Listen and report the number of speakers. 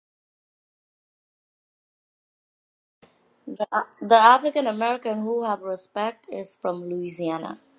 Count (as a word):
one